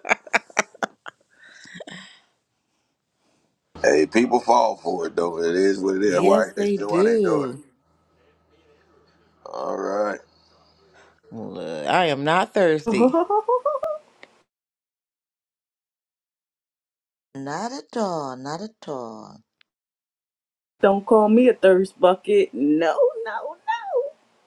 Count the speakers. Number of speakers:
four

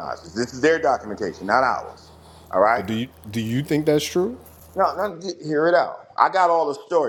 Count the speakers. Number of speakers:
two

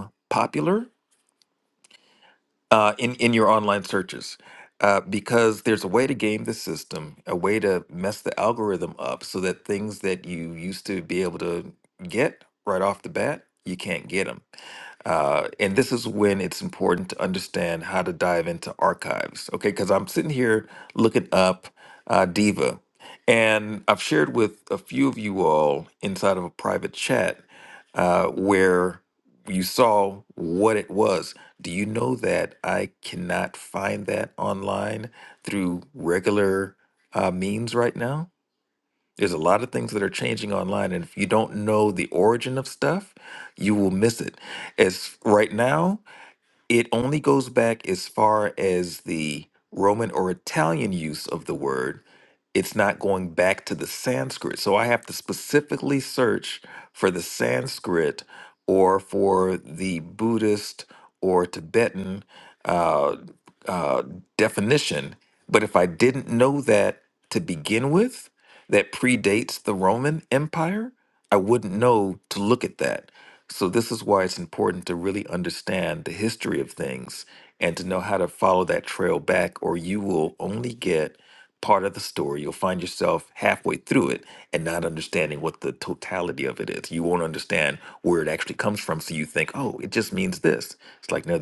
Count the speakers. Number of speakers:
one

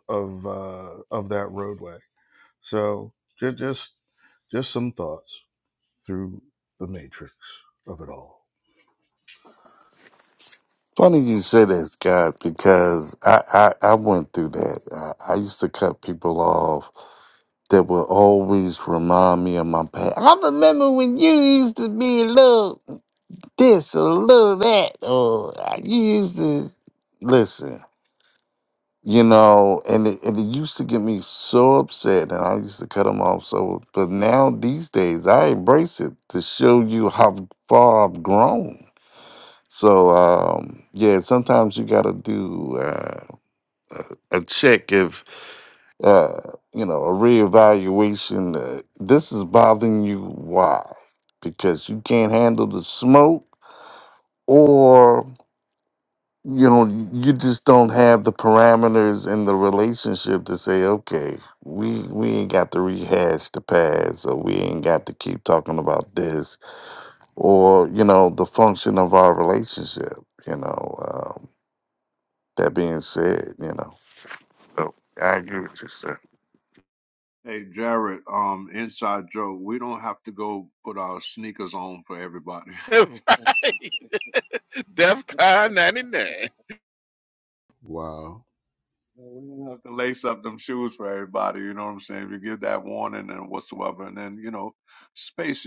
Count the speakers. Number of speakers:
four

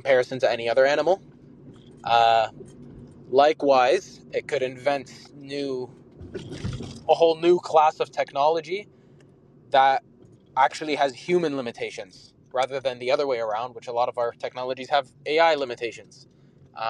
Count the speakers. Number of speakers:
one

